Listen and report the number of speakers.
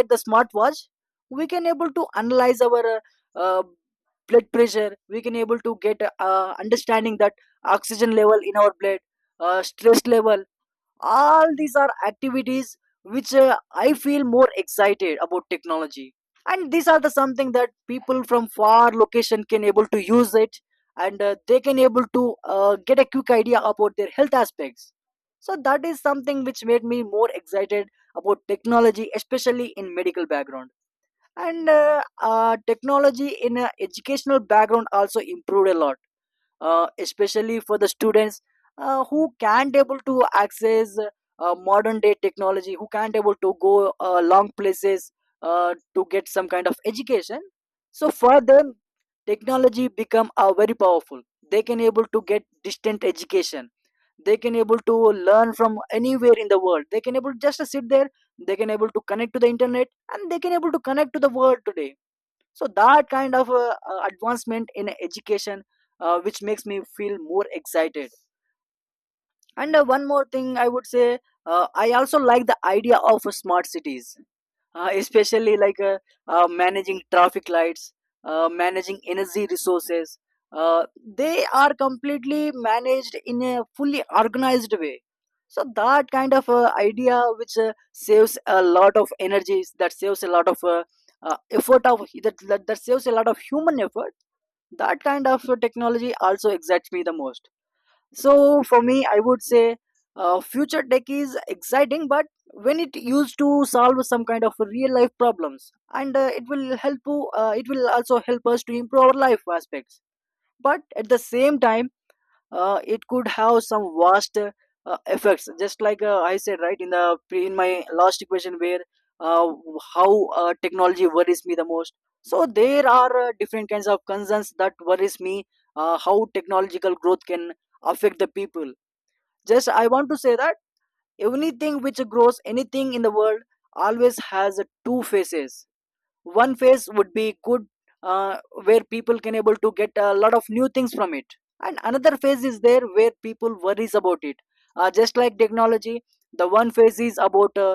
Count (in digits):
1